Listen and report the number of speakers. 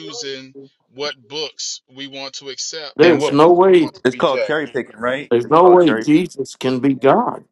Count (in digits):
3